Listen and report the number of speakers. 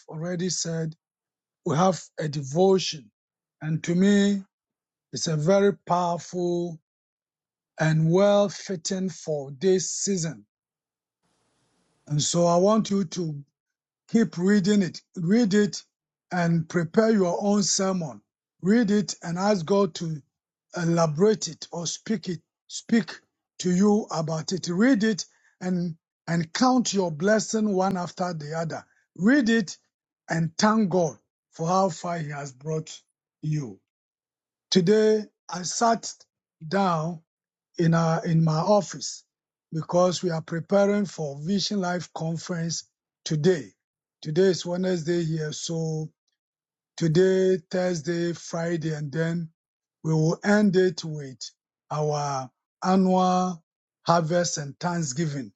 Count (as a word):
one